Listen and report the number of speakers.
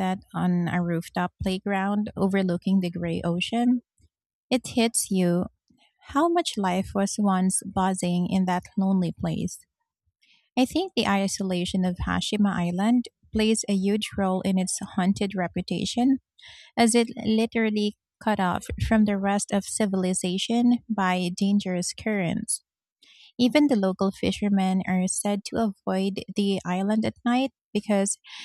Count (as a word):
one